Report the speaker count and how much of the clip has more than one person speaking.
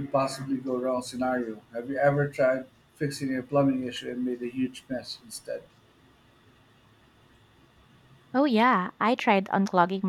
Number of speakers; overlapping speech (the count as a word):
two, no overlap